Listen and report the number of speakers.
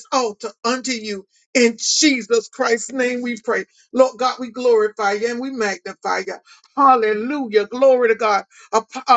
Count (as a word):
one